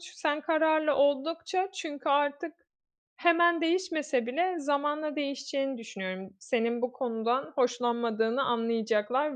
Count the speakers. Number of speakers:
one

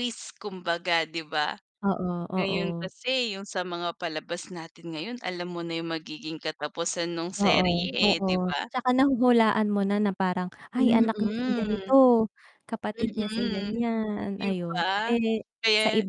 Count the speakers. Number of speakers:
two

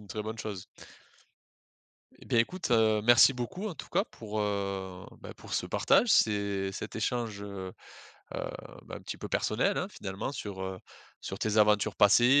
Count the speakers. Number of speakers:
one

